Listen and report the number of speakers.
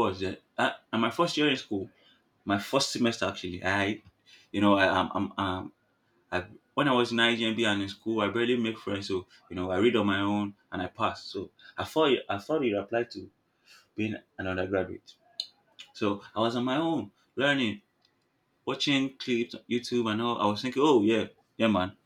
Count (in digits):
1